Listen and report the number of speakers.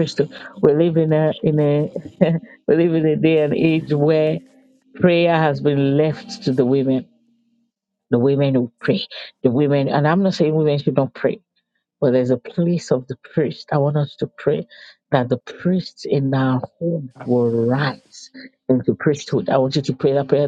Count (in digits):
1